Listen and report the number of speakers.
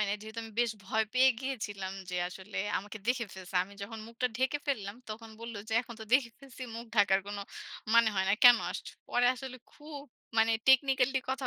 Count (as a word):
one